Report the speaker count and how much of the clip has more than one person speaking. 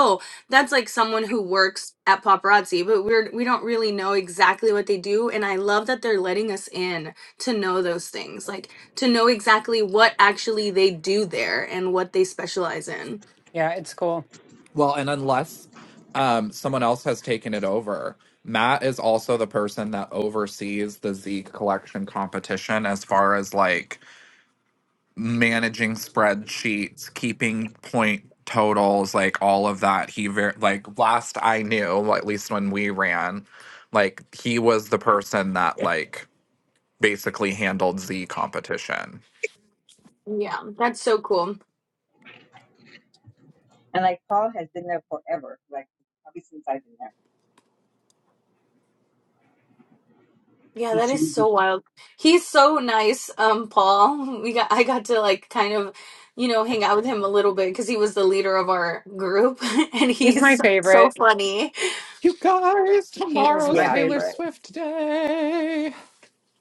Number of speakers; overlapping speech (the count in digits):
4, about 3%